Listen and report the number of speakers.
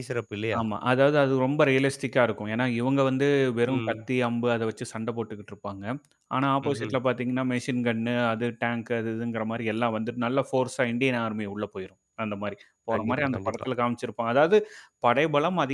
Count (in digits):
2